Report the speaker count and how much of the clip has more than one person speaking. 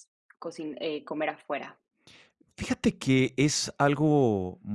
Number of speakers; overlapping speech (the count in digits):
2, no overlap